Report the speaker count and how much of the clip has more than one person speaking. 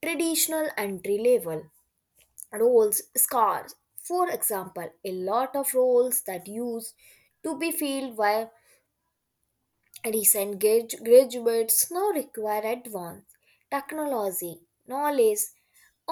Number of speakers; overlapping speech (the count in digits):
1, no overlap